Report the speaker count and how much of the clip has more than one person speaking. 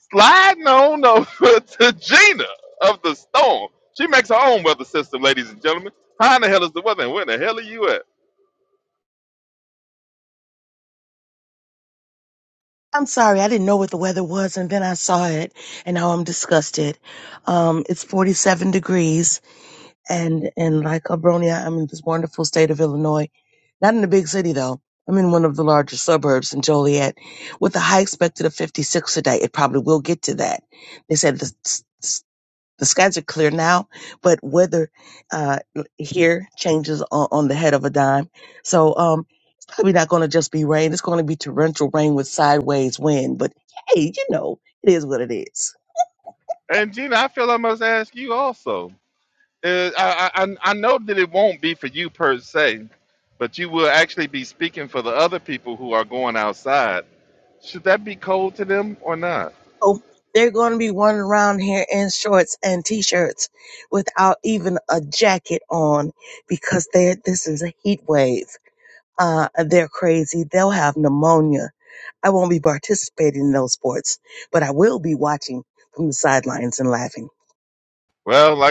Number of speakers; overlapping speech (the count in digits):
2, no overlap